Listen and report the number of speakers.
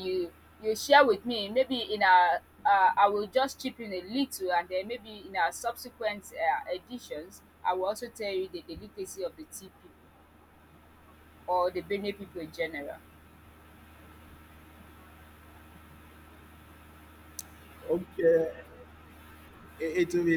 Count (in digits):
2